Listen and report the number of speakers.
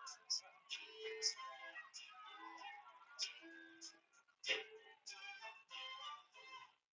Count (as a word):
zero